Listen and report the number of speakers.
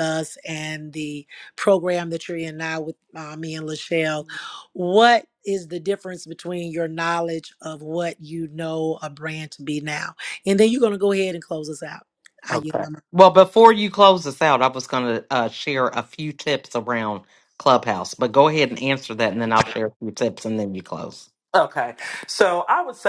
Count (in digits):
3